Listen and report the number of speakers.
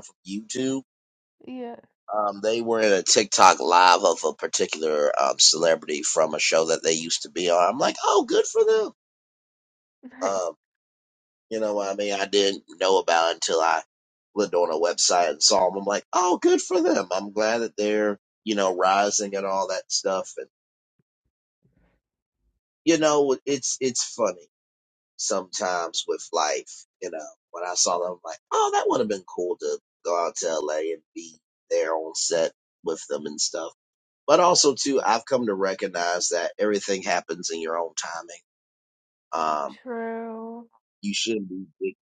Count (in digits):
2